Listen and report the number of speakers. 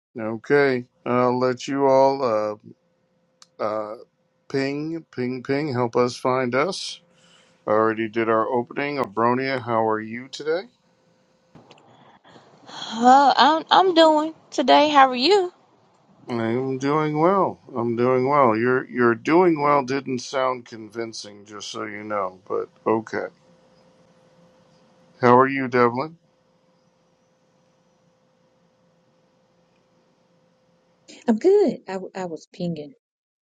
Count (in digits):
3